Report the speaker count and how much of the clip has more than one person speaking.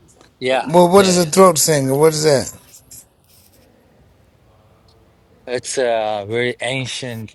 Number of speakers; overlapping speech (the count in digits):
2, about 11%